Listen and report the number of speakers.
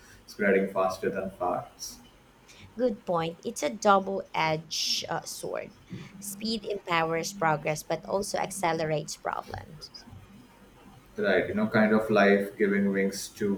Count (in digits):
2